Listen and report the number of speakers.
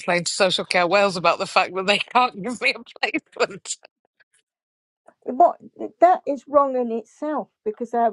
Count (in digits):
2